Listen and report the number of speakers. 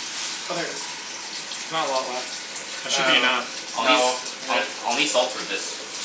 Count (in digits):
3